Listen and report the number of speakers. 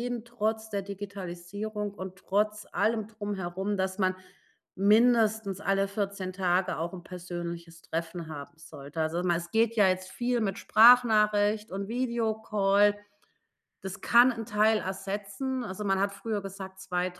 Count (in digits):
1